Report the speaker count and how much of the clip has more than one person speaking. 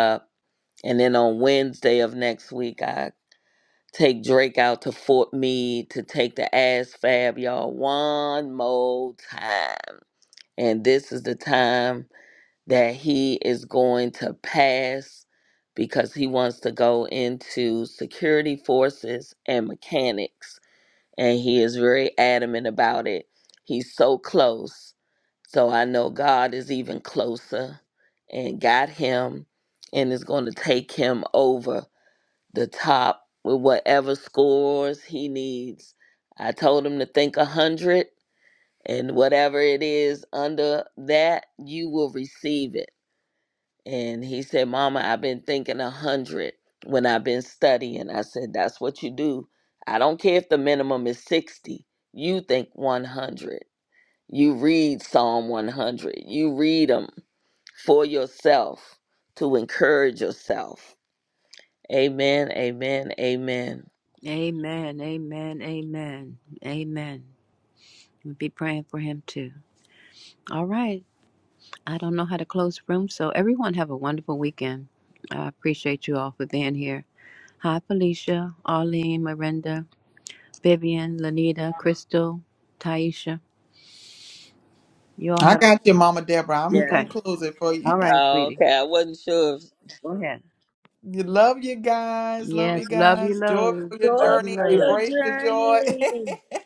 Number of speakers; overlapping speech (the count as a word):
three, about 5%